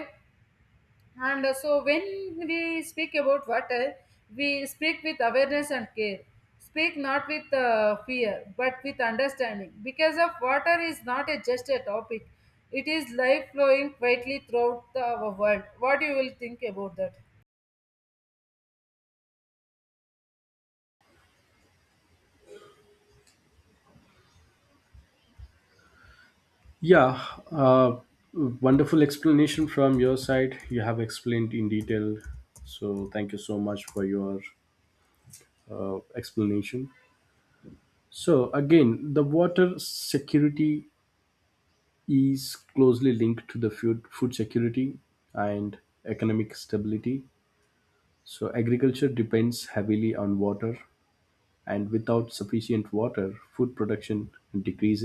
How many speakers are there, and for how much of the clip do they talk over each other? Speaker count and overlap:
2, no overlap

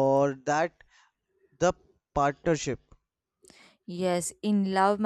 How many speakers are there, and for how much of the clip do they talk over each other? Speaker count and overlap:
2, no overlap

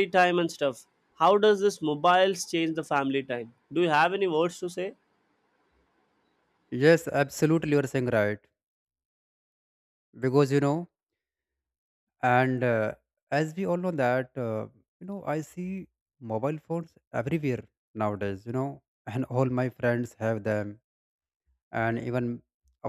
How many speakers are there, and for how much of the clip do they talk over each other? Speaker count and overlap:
2, no overlap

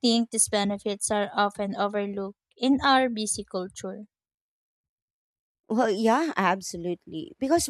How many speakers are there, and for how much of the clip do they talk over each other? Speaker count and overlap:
2, no overlap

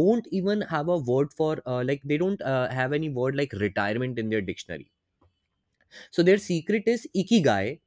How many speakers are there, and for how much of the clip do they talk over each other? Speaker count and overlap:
1, no overlap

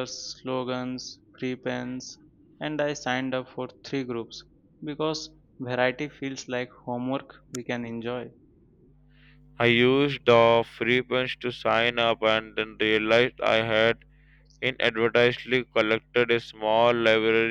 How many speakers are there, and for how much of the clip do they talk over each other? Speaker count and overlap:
2, no overlap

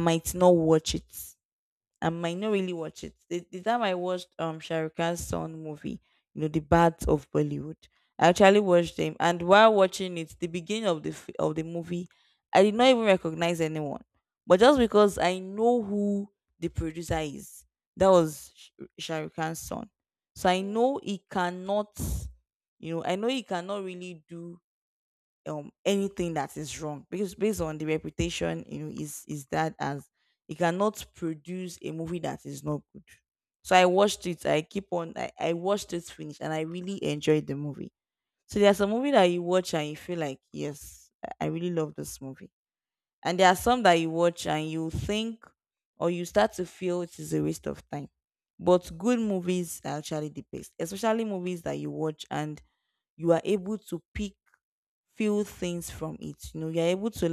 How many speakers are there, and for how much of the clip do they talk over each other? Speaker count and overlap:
1, no overlap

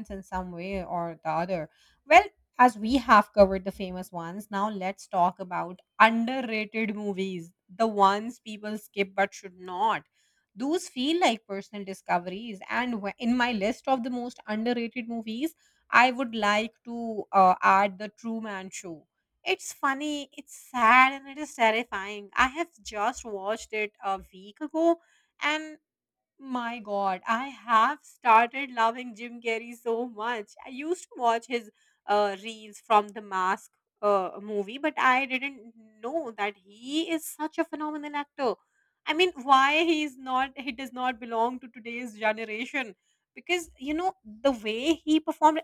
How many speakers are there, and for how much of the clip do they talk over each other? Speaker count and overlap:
1, no overlap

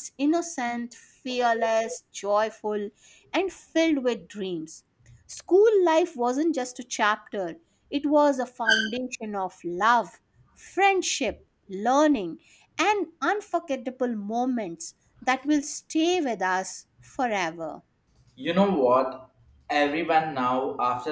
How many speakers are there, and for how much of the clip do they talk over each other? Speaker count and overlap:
2, no overlap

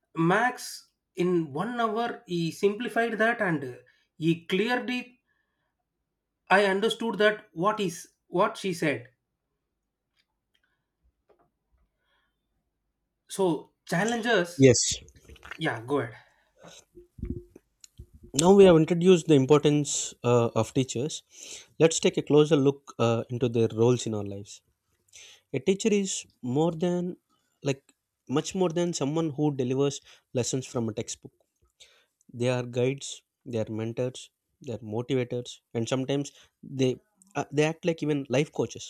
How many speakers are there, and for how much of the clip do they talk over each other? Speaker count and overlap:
2, no overlap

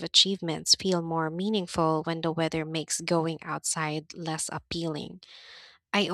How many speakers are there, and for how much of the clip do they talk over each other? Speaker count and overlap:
1, no overlap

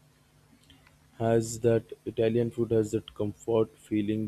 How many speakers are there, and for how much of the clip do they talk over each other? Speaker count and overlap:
1, no overlap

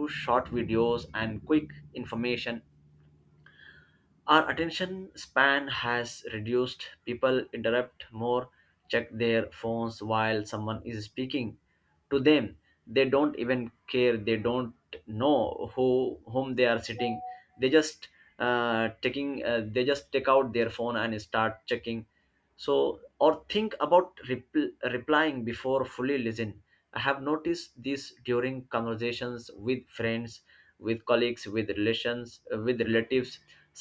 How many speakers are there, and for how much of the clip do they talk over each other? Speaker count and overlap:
1, no overlap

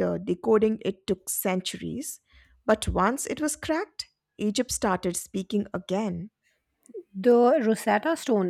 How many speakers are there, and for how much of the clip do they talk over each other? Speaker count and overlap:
2, no overlap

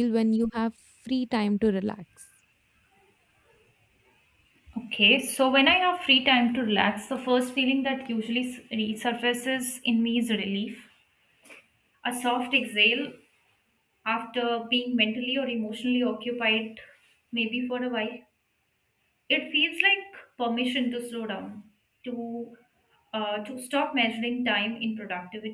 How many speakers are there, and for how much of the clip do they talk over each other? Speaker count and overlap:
2, no overlap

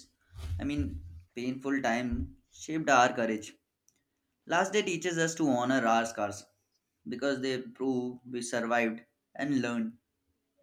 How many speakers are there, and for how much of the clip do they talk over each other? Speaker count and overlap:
1, no overlap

